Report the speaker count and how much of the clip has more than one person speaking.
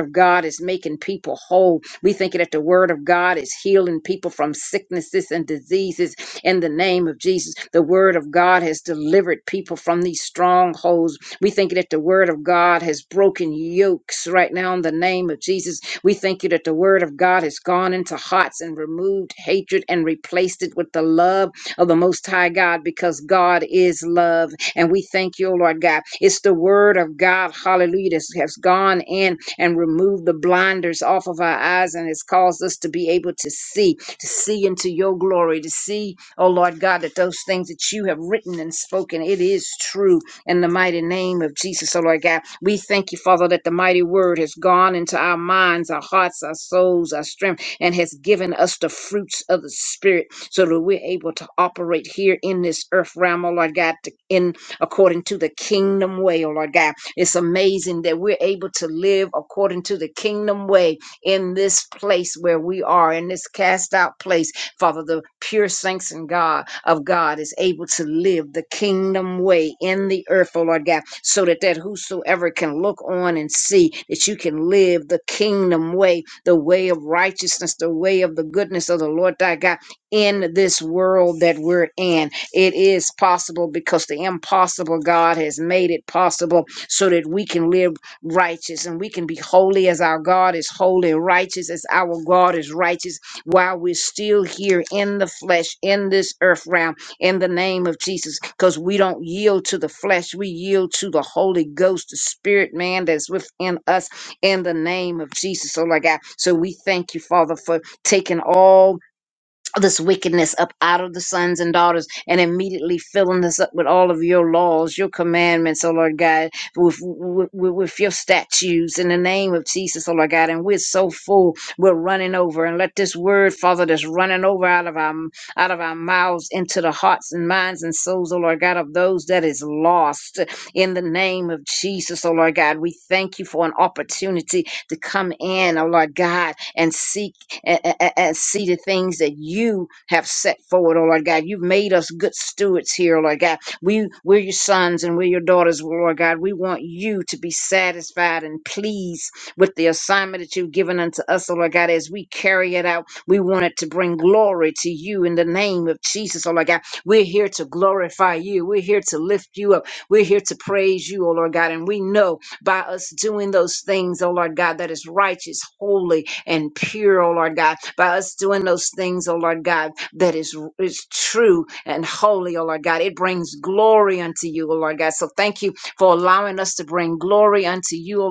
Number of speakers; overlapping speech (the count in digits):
1, no overlap